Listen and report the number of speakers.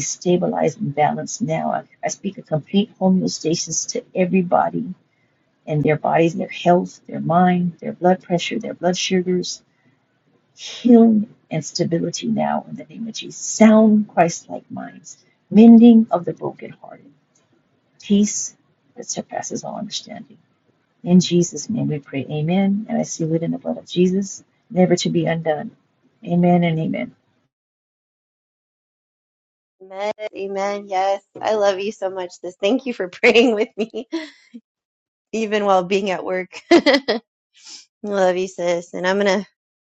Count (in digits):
2